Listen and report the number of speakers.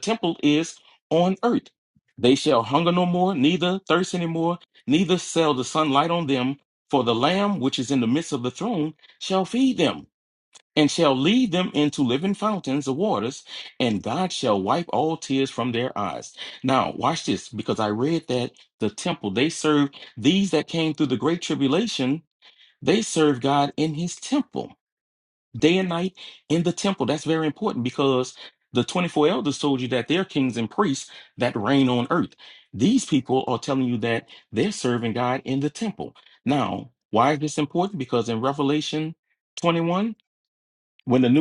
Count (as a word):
one